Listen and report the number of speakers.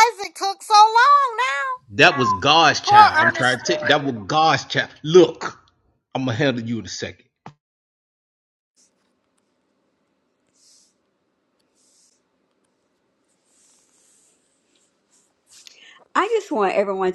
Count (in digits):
3